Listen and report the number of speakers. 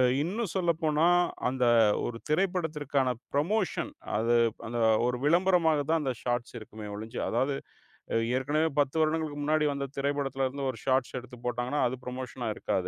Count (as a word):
one